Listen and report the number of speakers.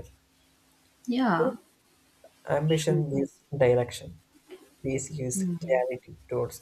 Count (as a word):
two